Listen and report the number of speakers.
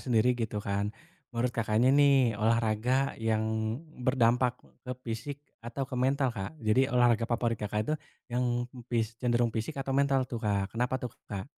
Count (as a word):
one